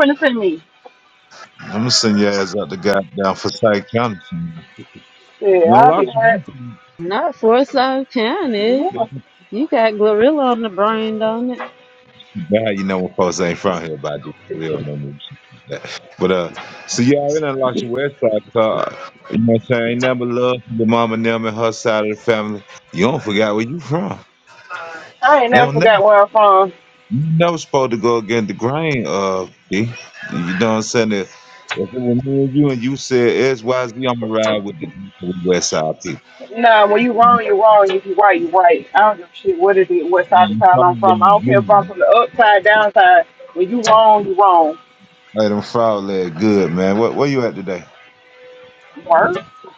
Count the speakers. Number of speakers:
3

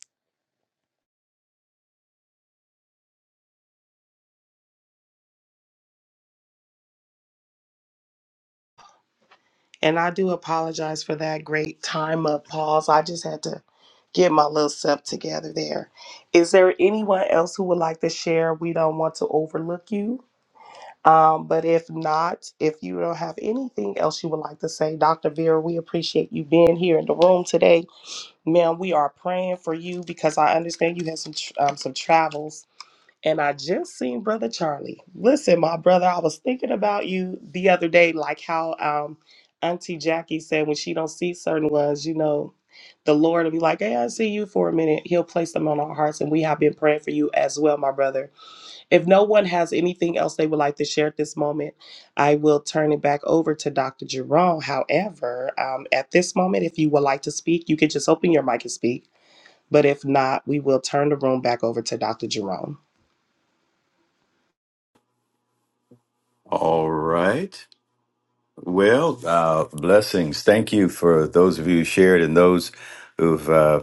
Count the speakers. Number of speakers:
2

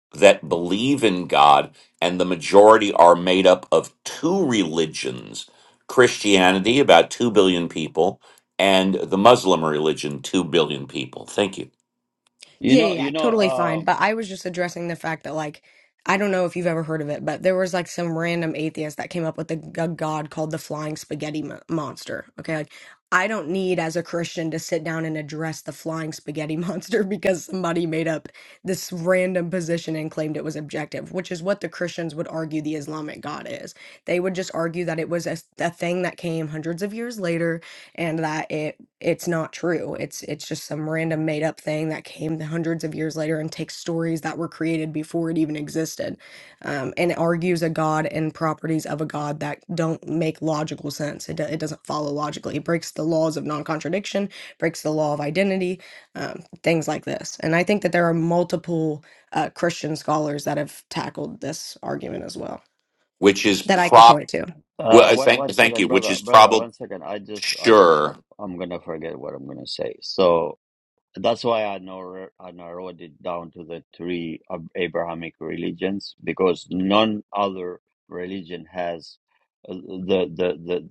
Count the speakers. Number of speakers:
3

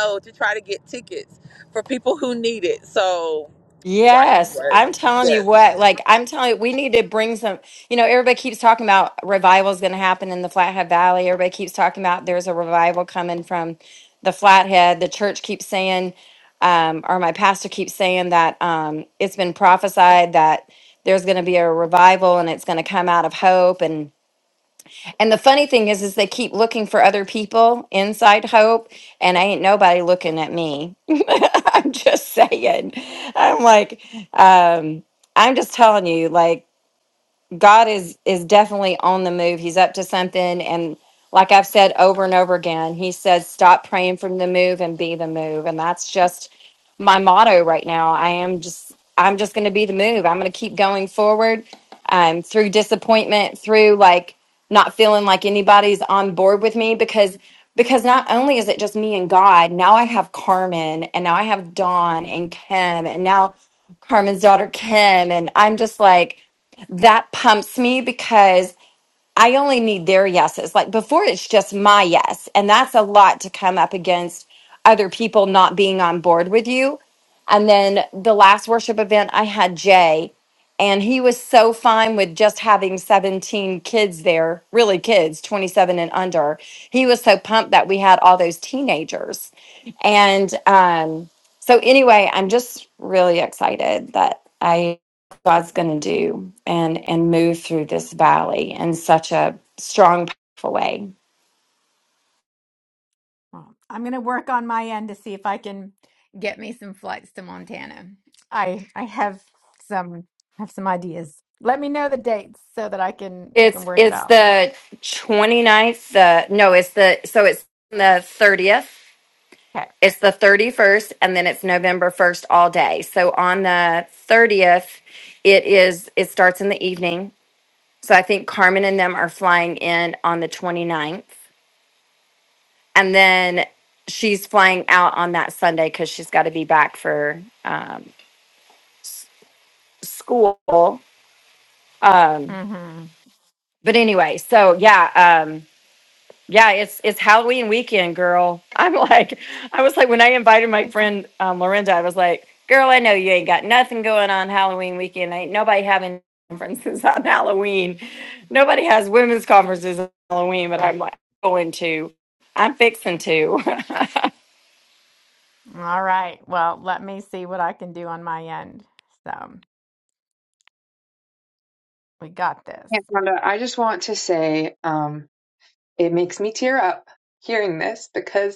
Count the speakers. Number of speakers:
4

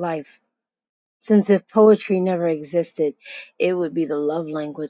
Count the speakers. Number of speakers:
1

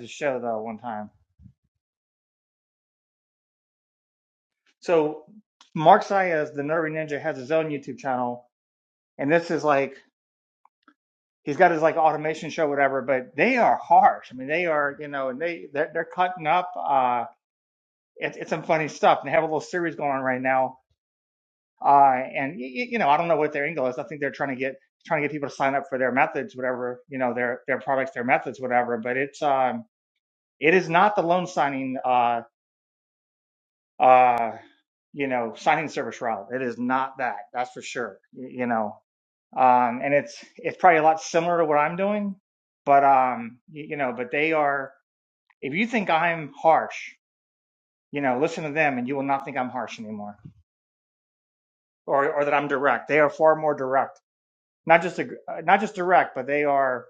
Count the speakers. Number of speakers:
1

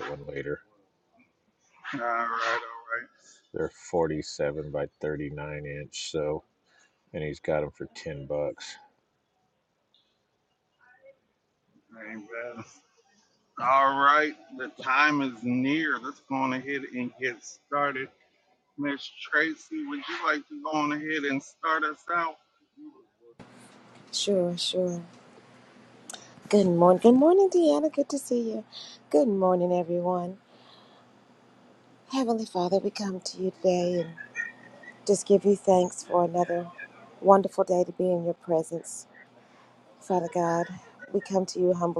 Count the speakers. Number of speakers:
3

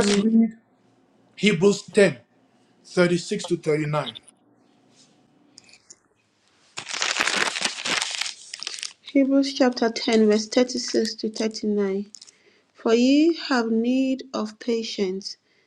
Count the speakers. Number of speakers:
2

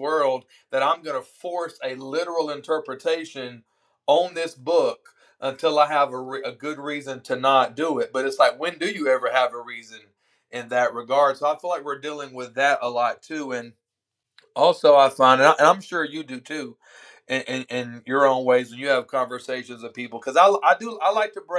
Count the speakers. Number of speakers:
1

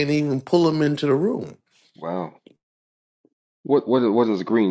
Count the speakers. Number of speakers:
2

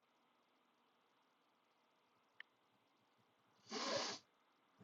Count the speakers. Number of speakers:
0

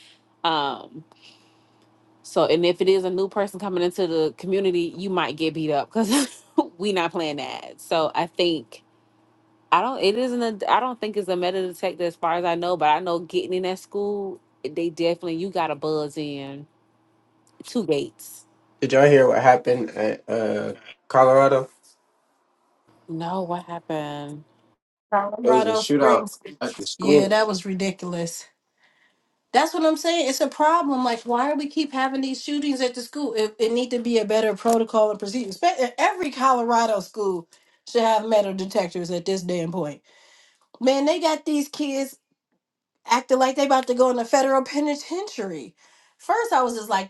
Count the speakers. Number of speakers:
3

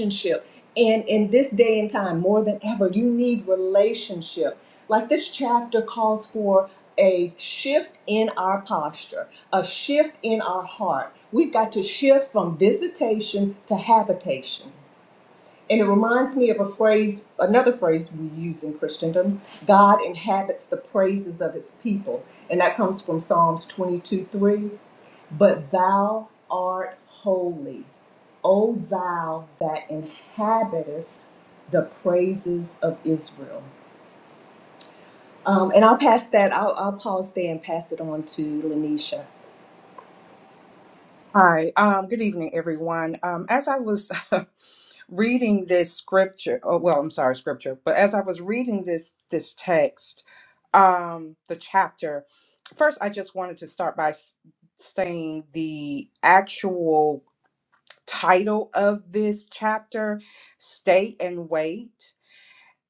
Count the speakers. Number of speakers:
2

